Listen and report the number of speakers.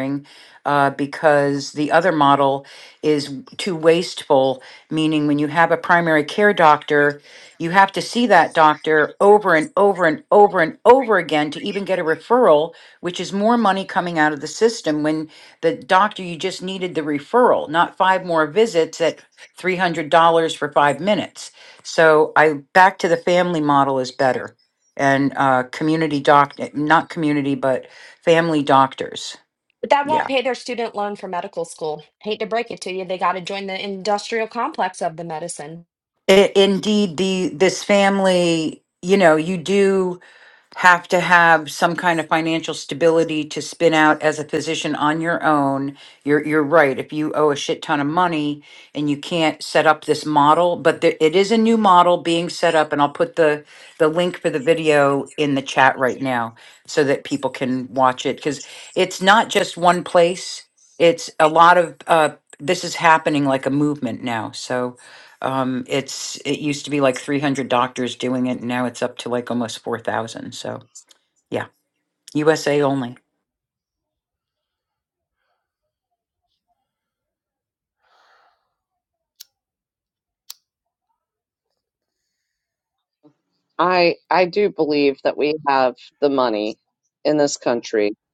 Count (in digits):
3